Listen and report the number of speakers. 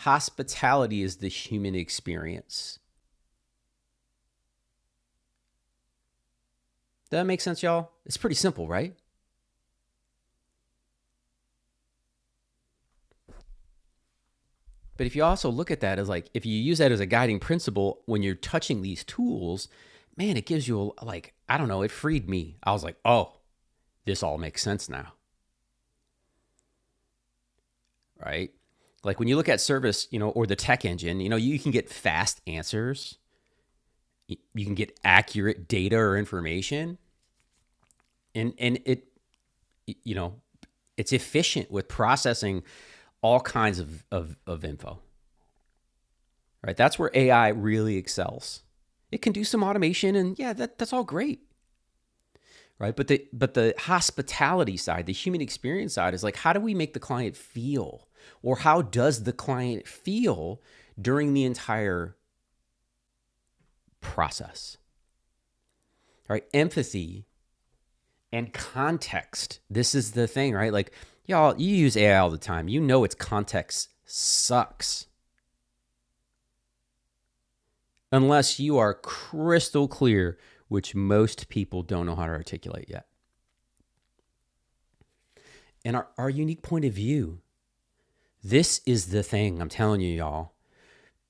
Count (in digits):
1